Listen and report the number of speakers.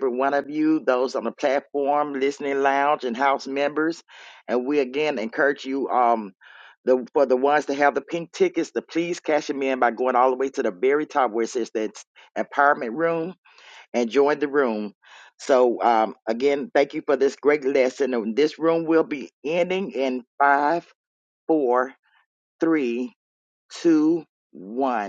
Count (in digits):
1